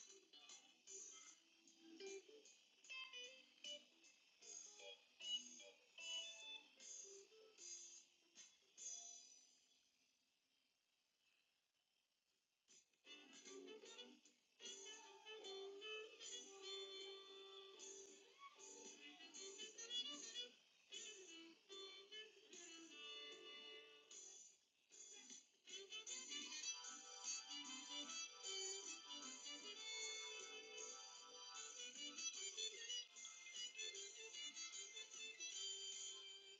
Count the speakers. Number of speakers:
0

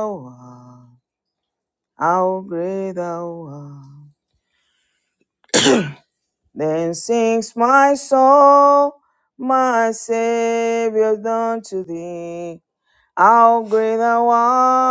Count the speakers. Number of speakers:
1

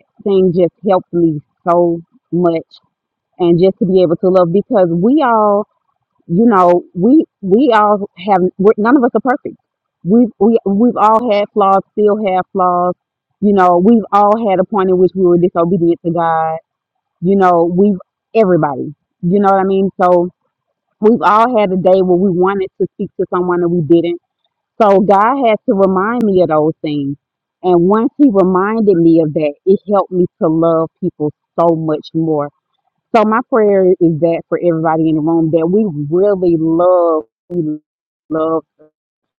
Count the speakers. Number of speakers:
1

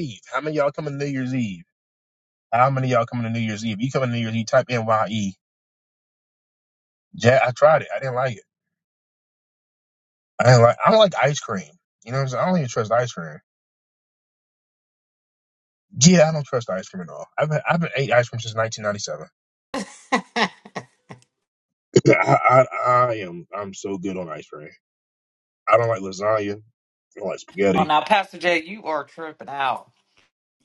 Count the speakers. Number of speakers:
2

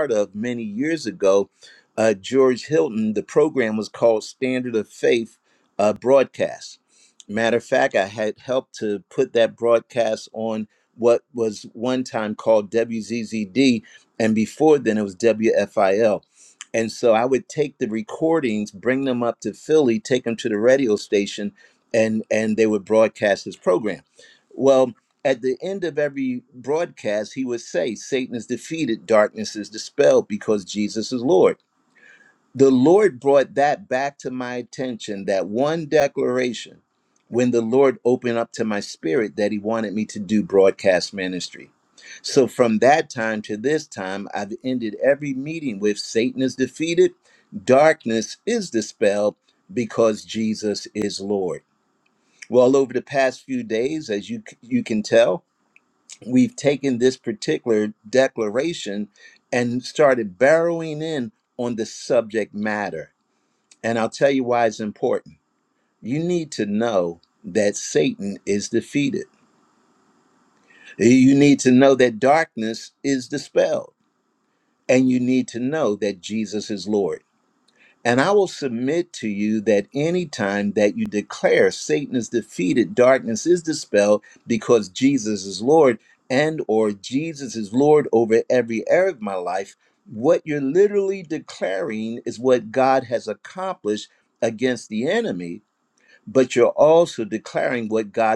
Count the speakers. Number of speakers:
1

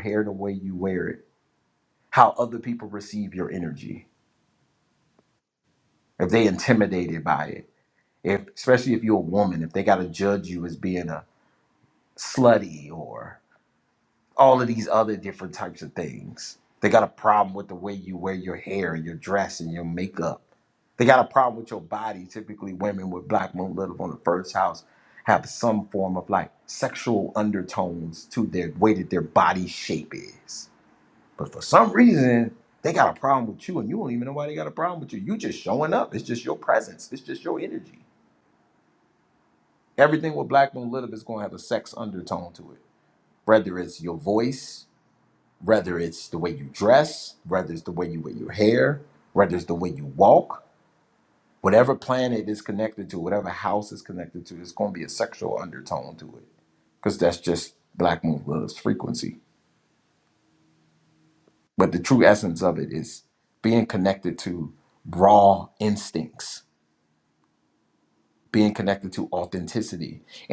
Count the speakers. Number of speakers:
1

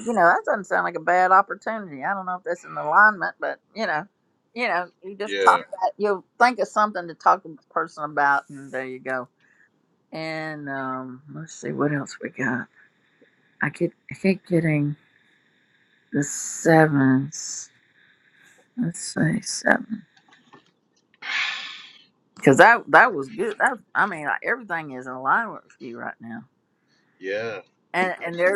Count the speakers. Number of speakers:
2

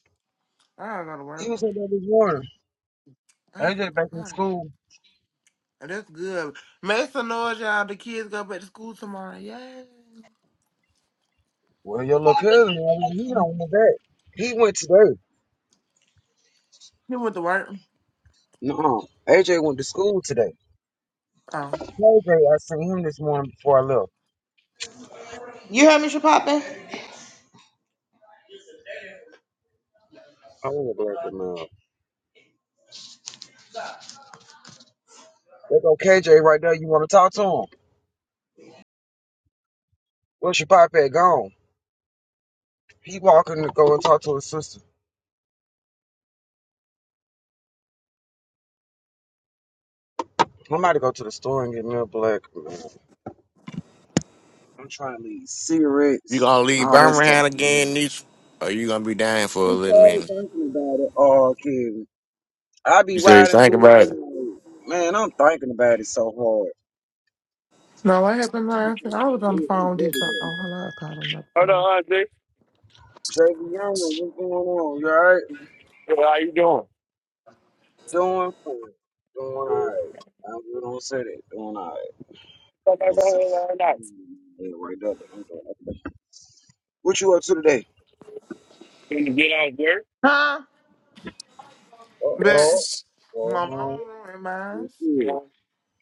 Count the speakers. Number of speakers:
5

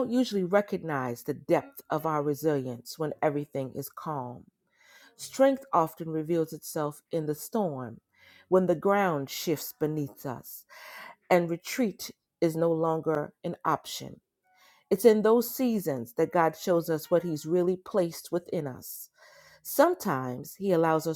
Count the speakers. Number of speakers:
1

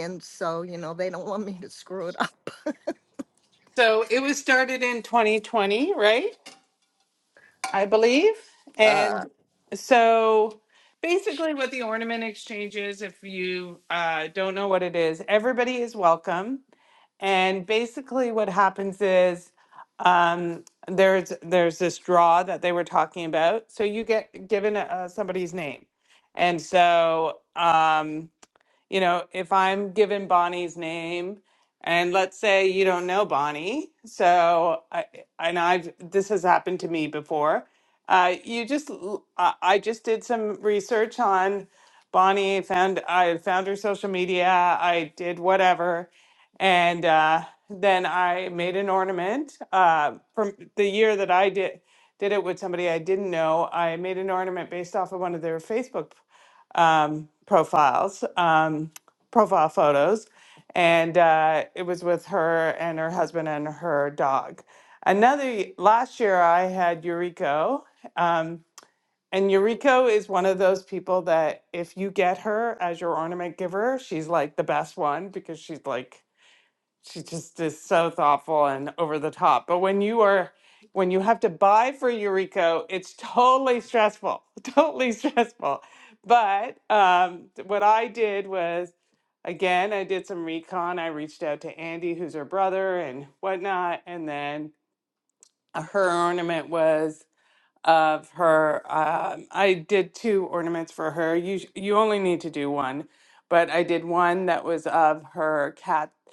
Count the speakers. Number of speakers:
2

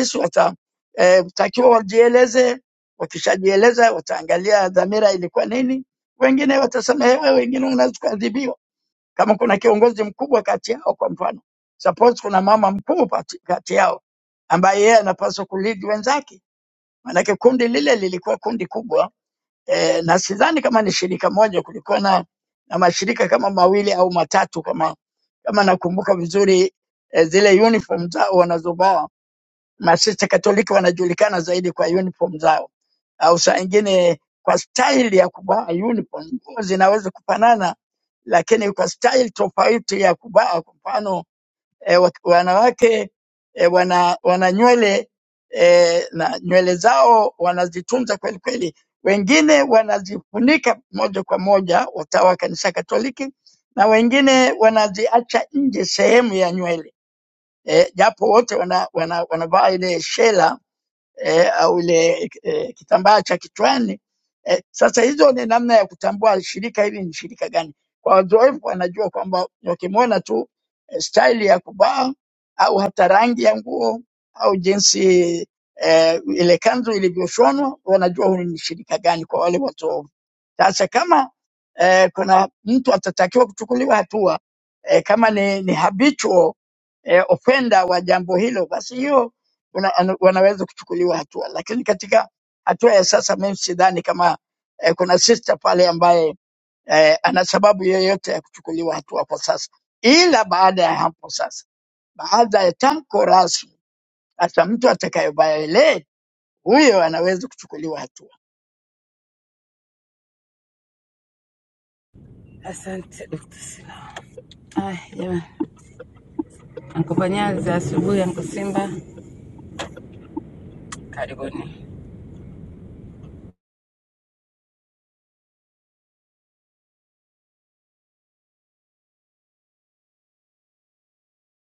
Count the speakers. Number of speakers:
2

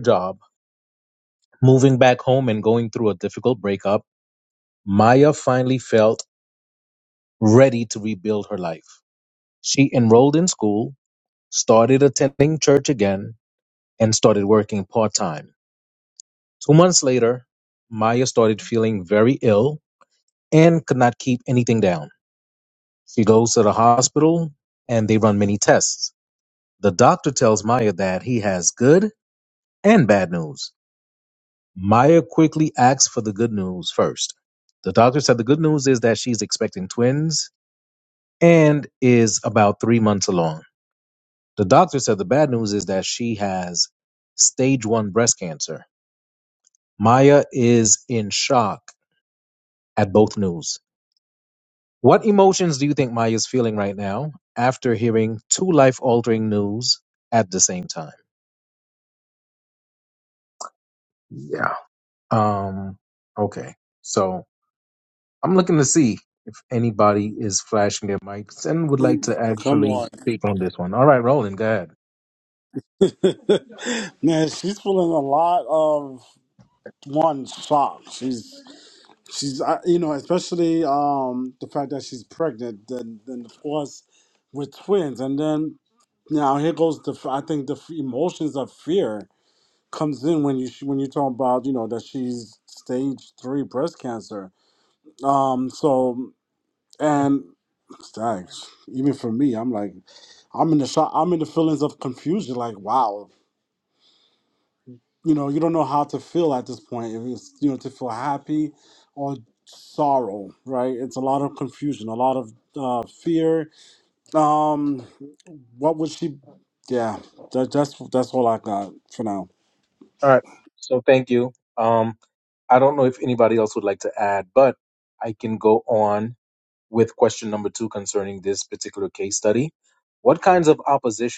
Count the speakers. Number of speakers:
2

